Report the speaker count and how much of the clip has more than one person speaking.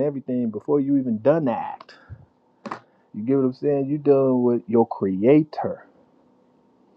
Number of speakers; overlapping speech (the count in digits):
1, no overlap